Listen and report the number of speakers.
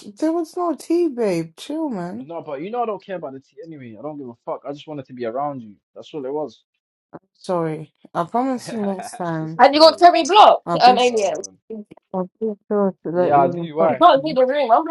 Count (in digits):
3